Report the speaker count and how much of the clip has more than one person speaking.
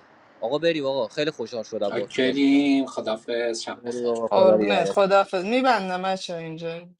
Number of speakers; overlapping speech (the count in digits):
3, about 21%